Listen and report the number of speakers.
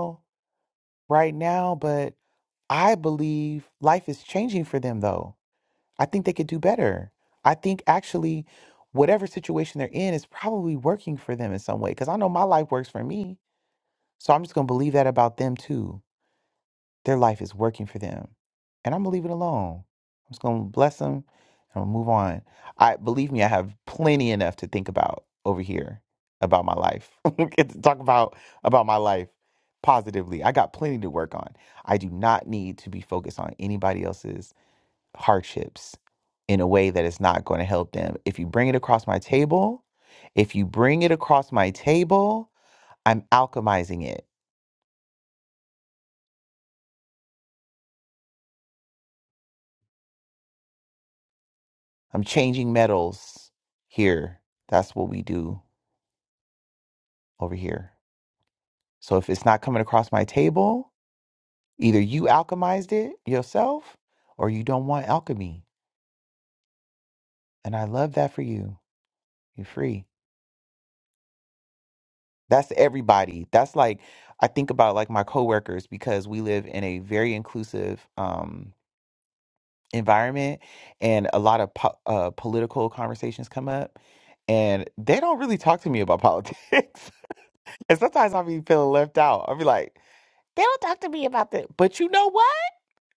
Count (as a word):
one